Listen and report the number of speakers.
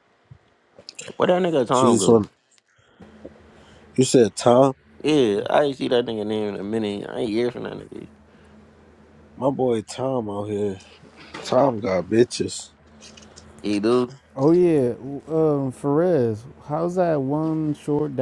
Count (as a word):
three